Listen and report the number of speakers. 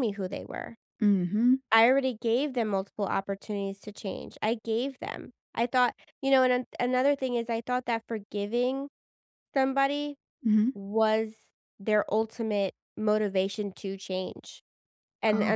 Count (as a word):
two